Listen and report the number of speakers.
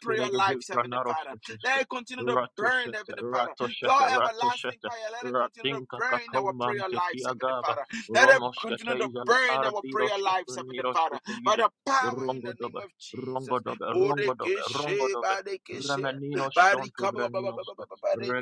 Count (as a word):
two